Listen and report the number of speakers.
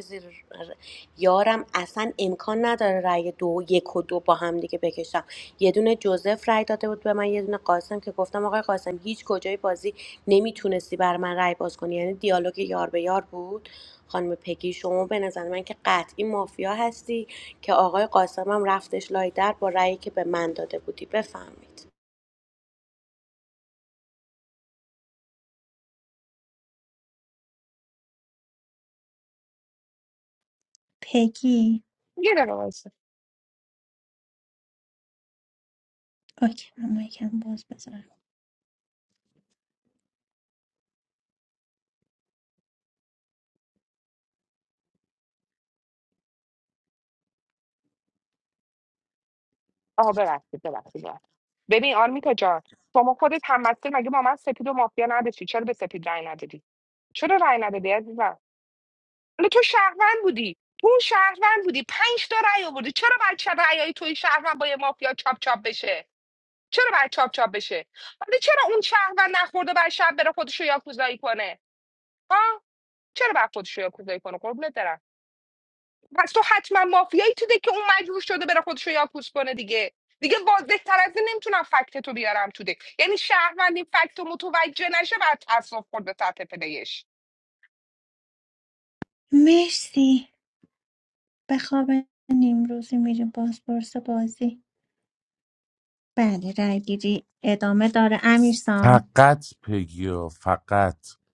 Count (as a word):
four